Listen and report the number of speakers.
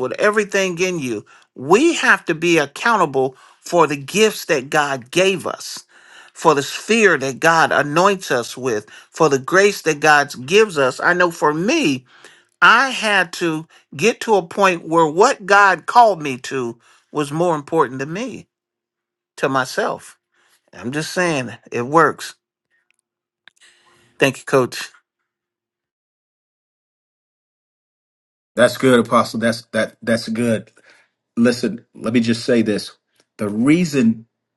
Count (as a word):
two